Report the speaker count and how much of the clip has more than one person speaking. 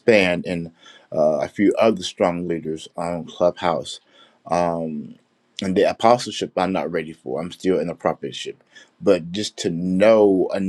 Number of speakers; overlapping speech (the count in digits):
1, no overlap